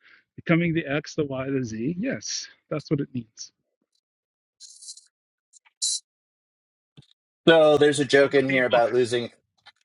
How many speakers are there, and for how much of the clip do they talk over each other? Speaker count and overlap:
2, about 6%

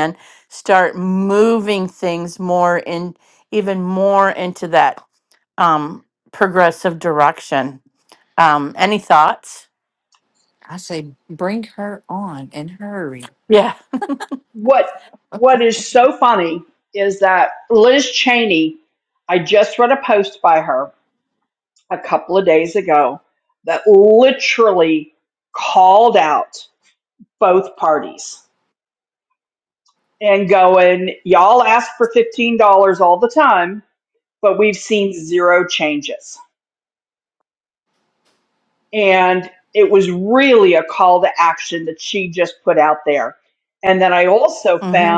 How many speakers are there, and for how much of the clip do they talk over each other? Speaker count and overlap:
3, no overlap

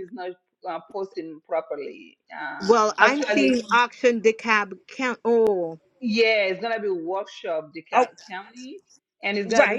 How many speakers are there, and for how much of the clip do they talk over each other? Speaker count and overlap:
2, about 14%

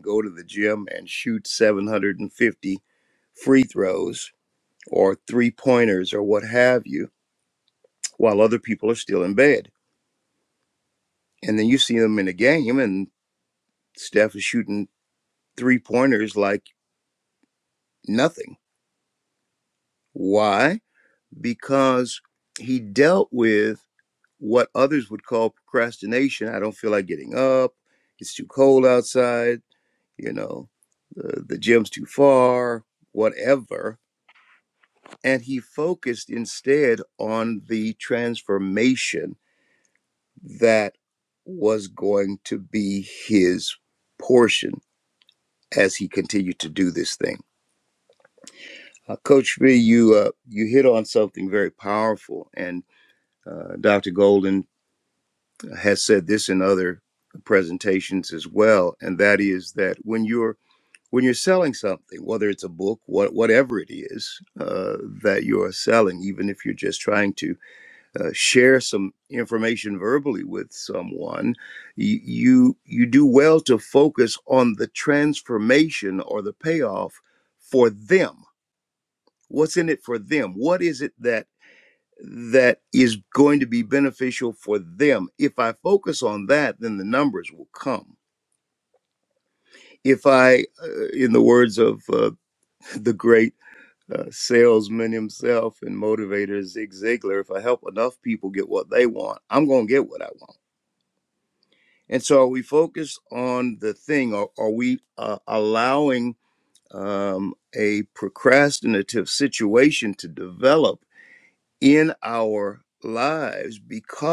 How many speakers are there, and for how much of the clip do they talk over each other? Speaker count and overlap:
1, no overlap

